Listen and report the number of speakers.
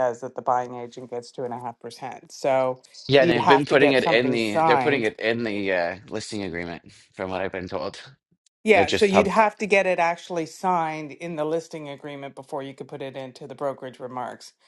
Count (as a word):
two